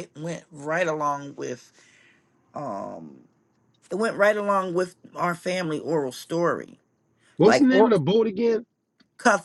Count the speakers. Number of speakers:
2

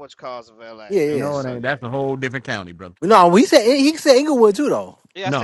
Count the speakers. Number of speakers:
3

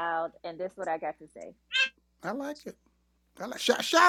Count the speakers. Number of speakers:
2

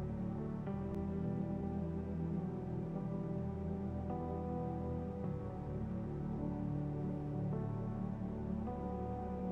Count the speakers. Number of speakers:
0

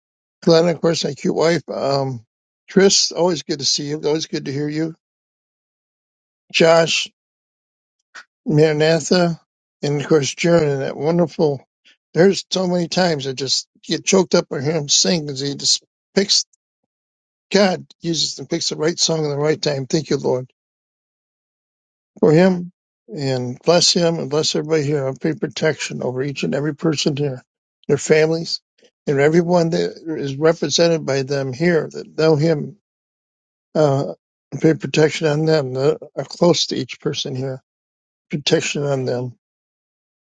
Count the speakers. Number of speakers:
1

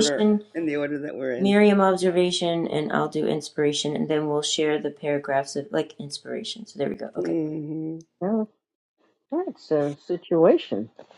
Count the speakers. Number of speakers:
3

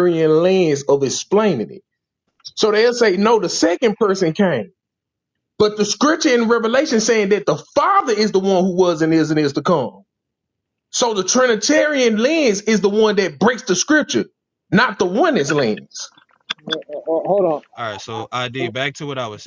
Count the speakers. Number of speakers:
3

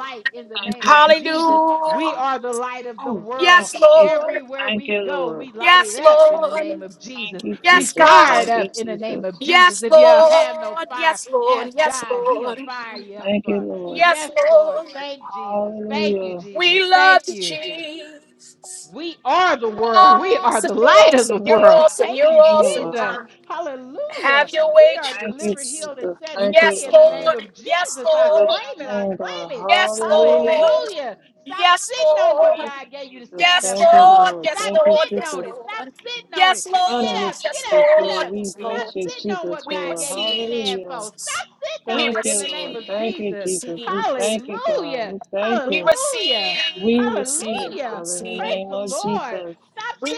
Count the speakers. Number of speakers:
3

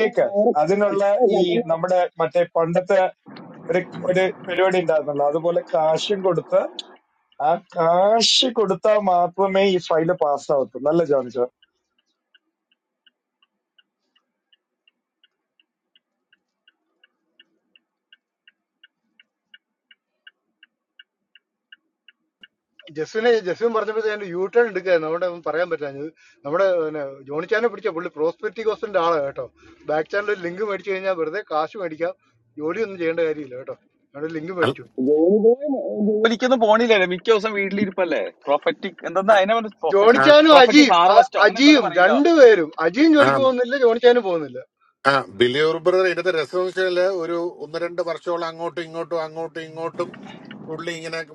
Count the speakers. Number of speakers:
4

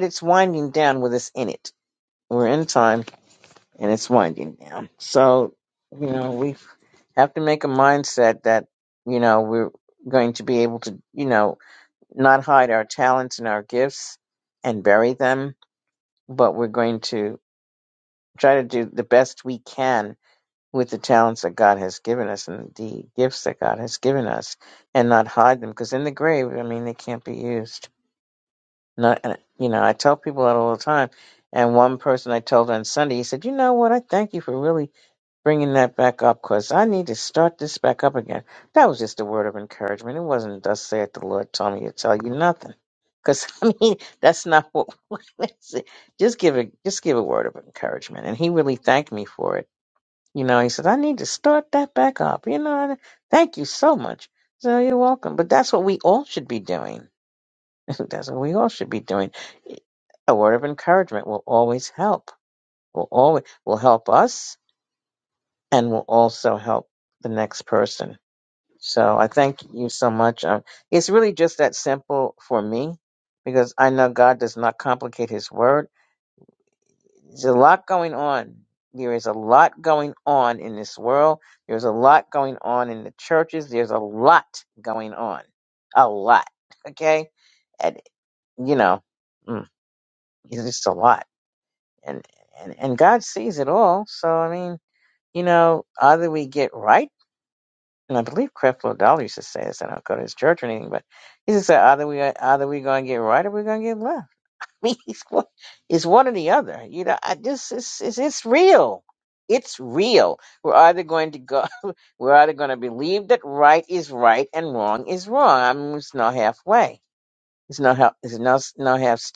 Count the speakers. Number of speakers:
1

